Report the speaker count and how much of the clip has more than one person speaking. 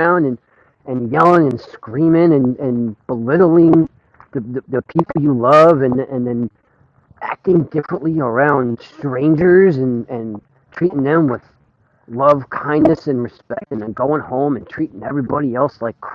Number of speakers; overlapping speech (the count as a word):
one, no overlap